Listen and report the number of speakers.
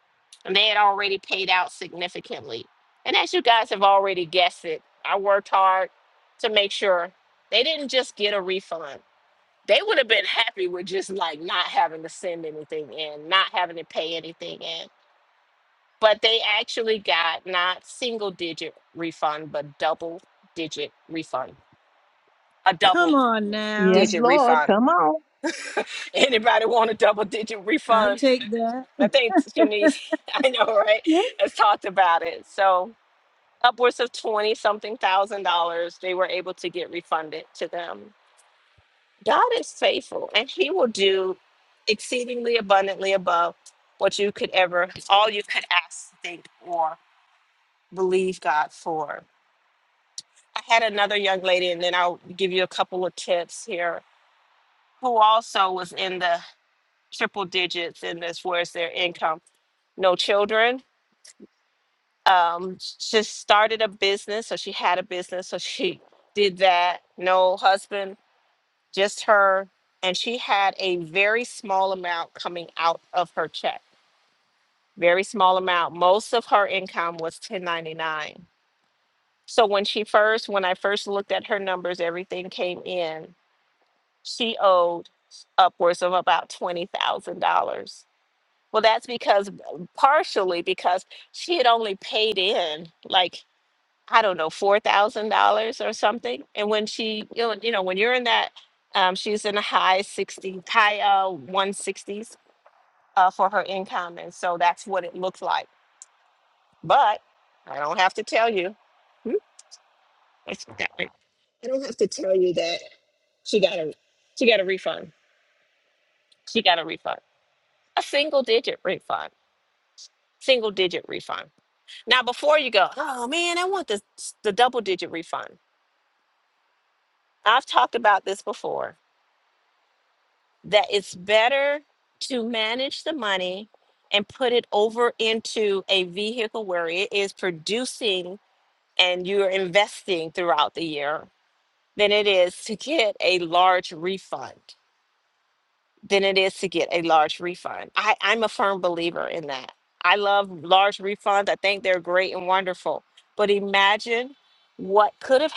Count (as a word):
three